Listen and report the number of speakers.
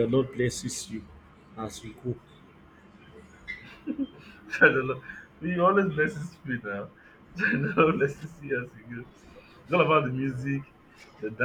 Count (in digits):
2